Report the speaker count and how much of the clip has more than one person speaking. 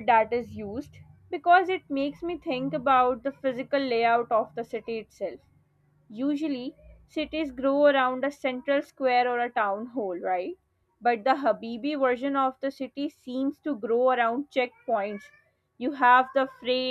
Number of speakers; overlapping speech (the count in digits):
1, no overlap